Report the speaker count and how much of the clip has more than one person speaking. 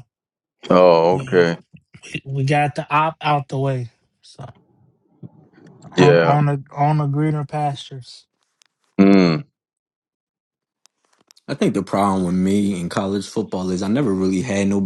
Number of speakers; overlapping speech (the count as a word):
three, about 5%